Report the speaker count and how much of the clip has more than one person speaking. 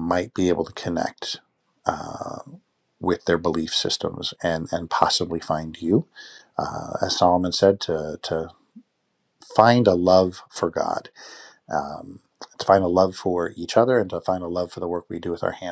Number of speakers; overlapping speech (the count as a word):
one, no overlap